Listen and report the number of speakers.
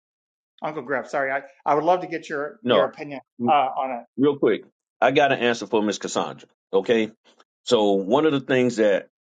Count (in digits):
2